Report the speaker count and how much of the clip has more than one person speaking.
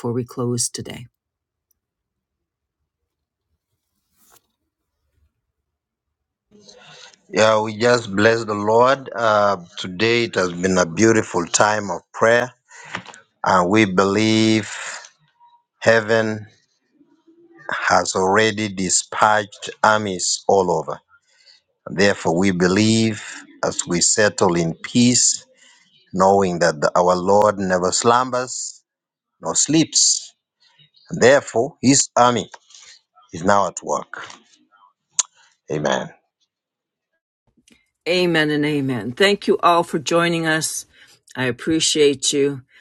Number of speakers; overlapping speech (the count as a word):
two, no overlap